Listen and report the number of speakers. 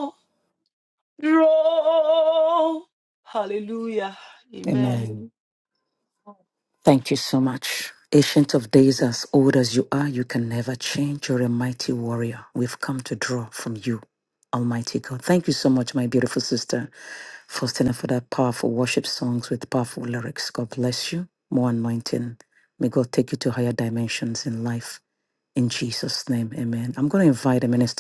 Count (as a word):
two